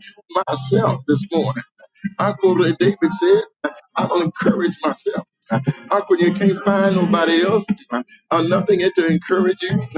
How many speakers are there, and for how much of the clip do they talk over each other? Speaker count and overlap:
1, no overlap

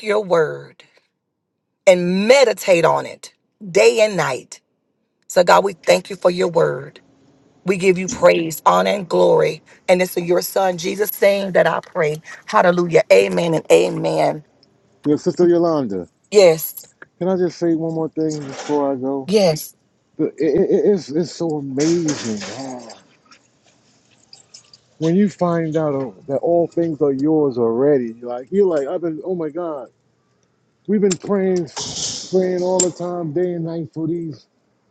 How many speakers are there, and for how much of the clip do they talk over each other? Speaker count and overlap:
2, no overlap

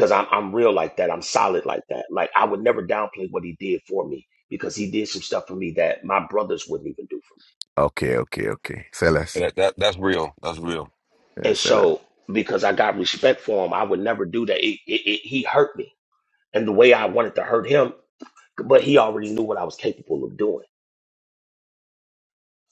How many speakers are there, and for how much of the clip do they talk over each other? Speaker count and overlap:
3, about 2%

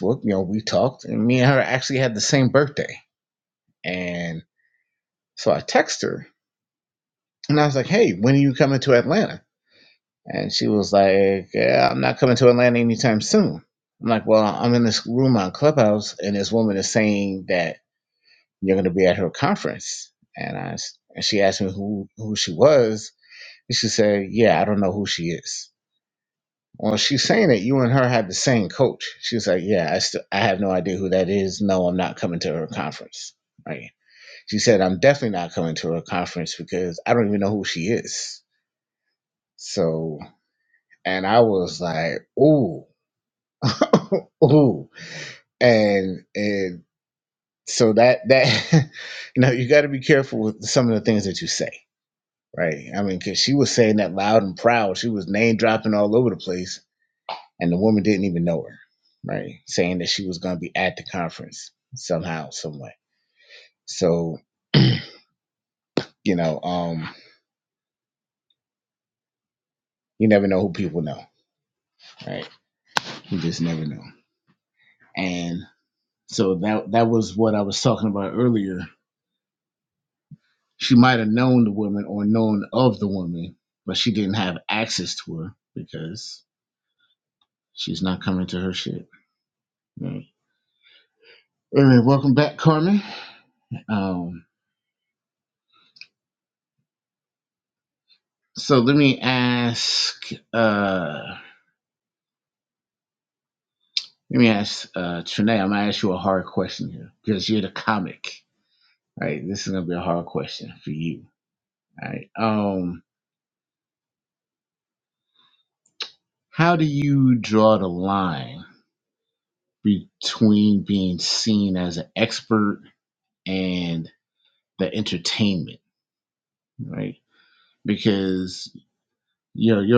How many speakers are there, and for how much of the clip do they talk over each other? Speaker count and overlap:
1, no overlap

